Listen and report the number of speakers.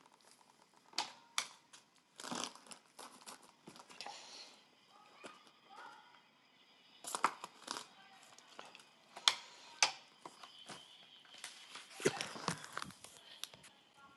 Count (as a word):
zero